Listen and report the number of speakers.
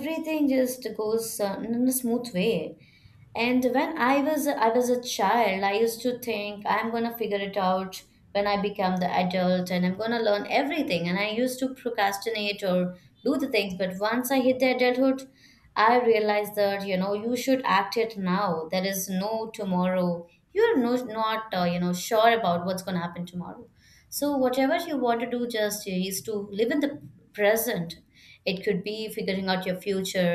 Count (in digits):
1